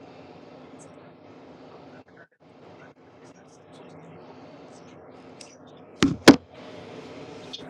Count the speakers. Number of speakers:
zero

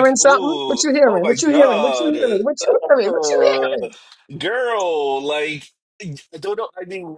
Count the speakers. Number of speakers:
two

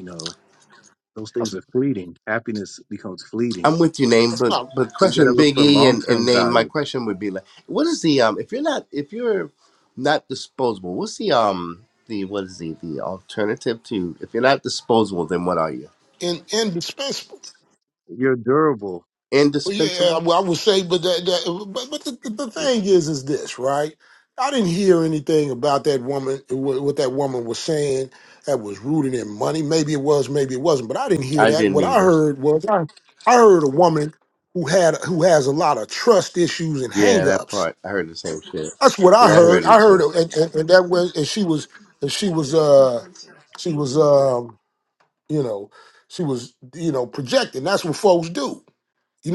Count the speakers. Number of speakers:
three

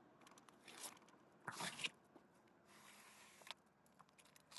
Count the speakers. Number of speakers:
zero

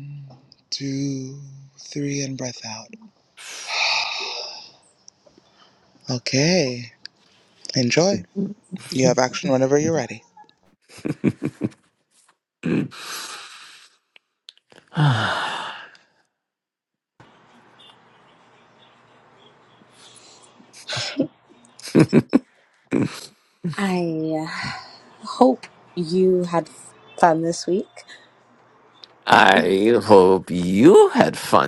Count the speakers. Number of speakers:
three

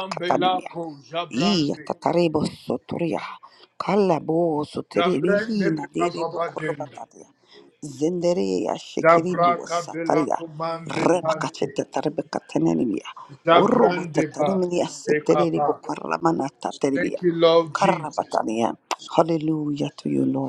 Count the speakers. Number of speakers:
two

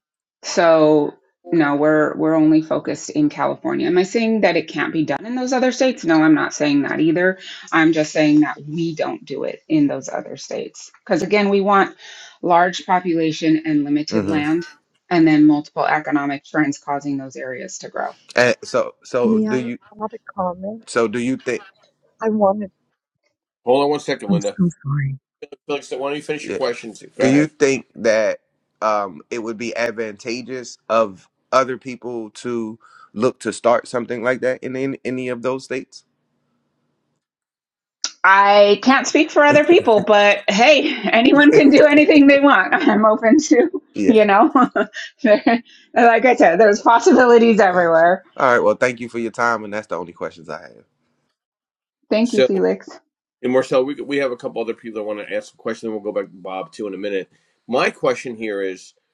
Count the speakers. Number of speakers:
four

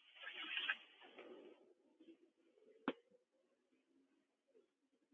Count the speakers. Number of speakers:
zero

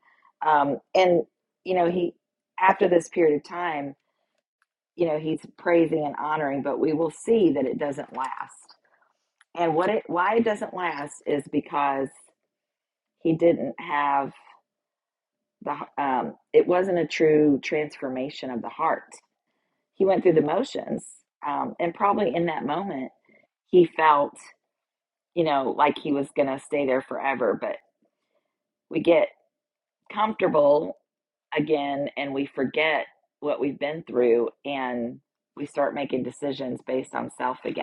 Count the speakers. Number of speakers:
one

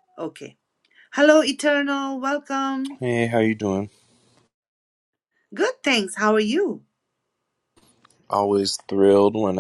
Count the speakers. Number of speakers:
two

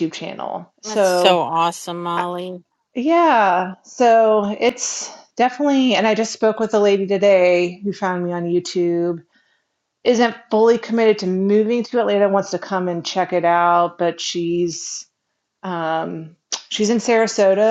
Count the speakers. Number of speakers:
two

